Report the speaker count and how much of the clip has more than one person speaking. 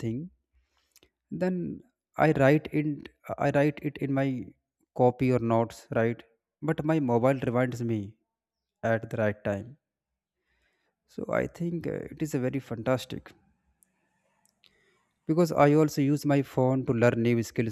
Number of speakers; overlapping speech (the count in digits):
1, no overlap